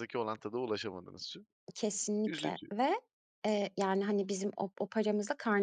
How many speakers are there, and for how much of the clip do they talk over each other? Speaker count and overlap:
2, about 7%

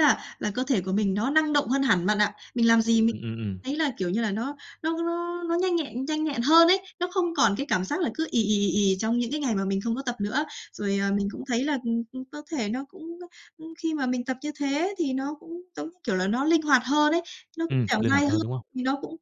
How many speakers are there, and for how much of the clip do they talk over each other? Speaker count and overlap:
2, about 5%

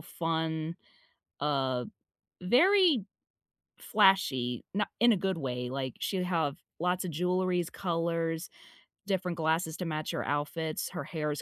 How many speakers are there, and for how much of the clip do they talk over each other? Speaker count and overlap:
1, no overlap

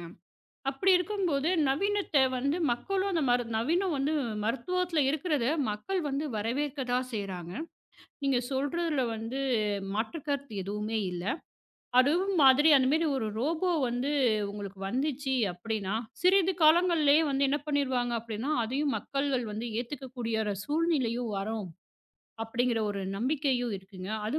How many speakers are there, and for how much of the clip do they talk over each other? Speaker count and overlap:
1, no overlap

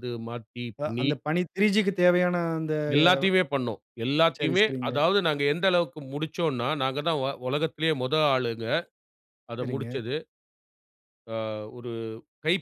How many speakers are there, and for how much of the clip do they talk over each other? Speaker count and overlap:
2, about 11%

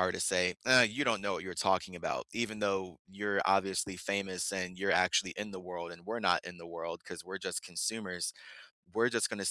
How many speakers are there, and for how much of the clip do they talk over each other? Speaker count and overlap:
1, no overlap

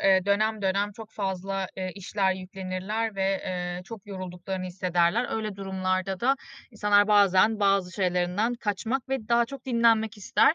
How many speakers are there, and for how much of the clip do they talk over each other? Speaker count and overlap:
1, no overlap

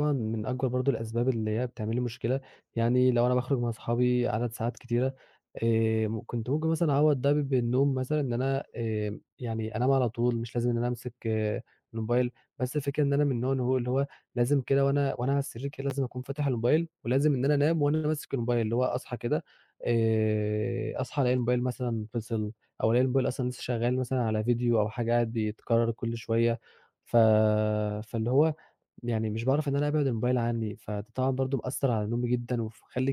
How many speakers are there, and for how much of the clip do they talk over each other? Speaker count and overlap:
1, no overlap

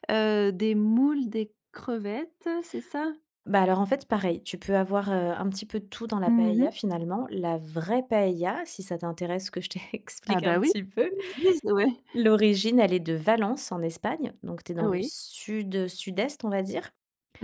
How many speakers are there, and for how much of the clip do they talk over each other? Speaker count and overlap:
2, about 7%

